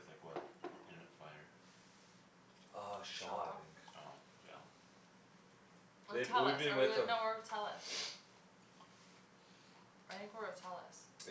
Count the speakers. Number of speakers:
3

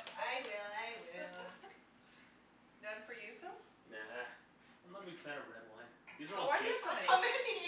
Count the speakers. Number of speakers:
3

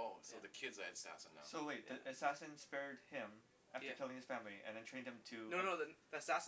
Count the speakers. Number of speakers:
3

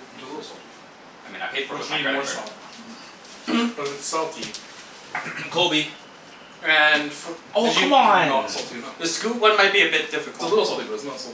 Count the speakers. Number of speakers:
4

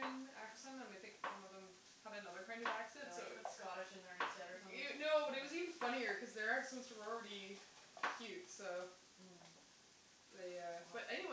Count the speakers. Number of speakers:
2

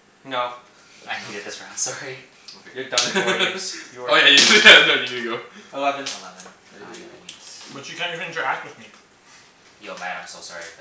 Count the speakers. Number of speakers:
4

